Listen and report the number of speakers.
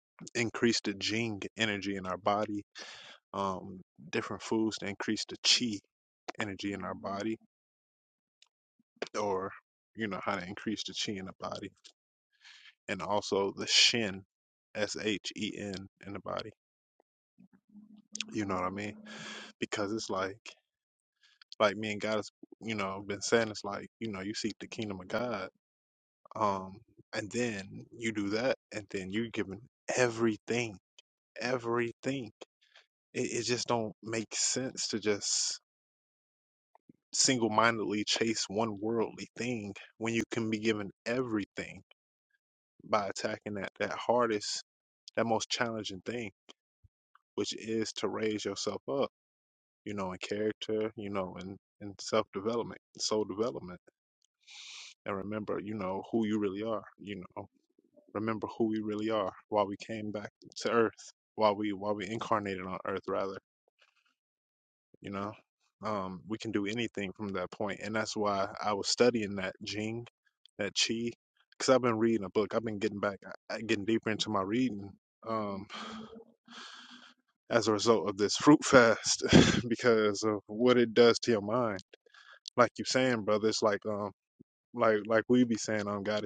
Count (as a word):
one